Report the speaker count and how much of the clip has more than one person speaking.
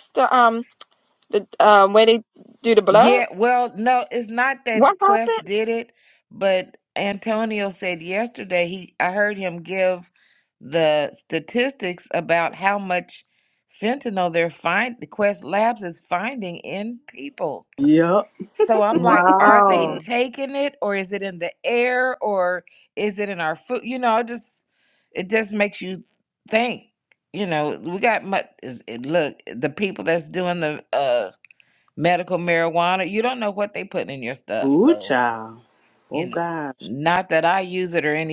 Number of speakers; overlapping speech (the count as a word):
three, about 7%